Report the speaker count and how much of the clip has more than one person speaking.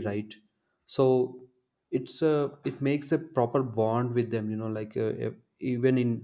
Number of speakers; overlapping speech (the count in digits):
1, no overlap